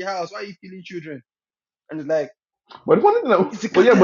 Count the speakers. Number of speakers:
two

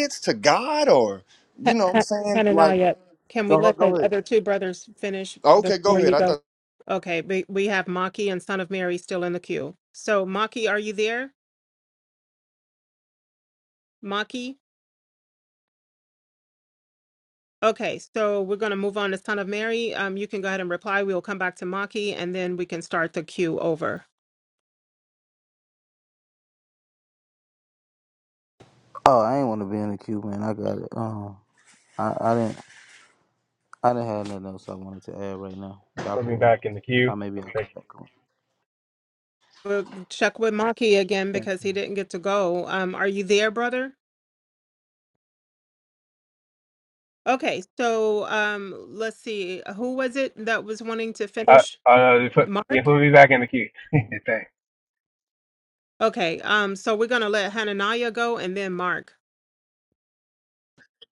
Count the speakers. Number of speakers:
four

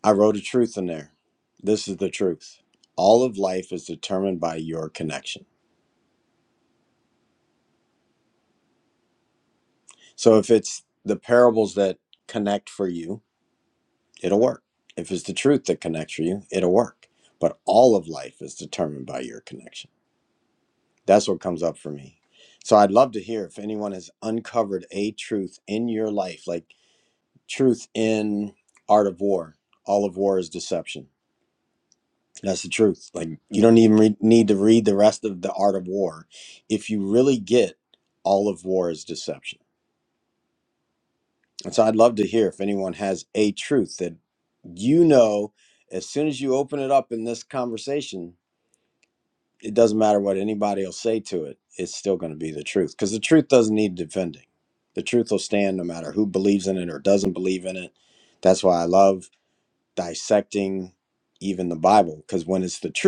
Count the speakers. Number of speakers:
one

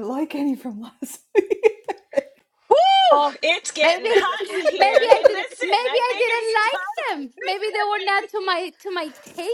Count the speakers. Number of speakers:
three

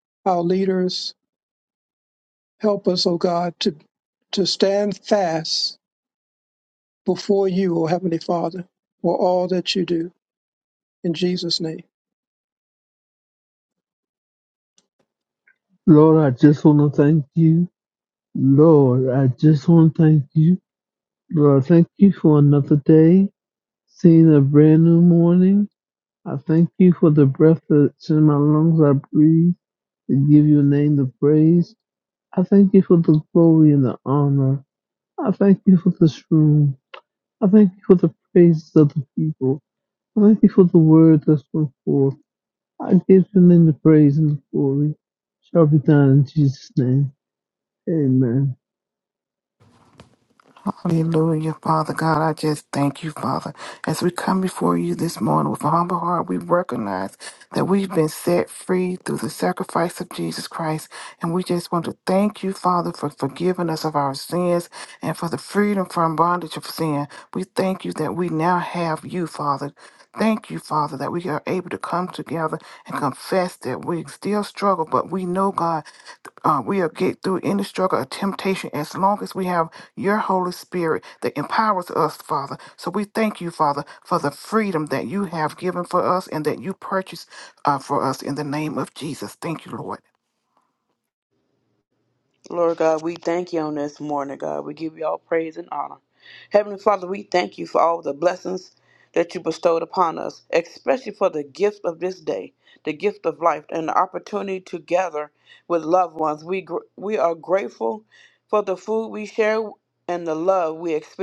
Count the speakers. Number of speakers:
four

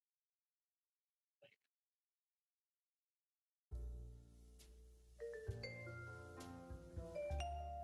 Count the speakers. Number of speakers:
zero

